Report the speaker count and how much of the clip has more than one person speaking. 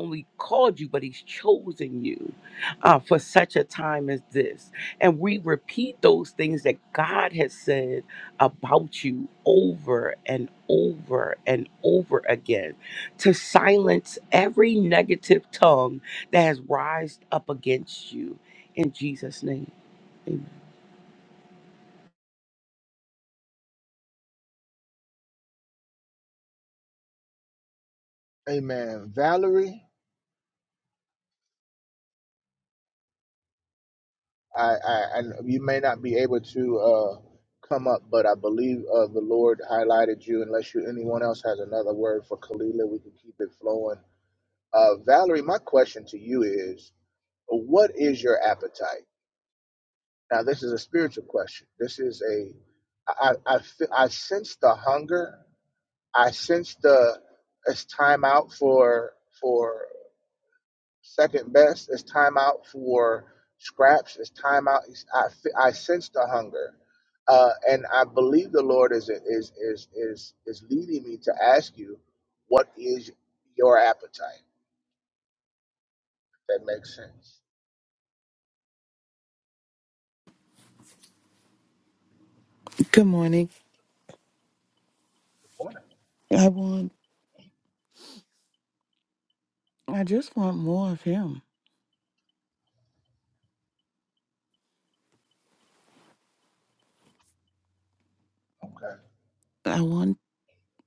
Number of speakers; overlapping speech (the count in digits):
3, no overlap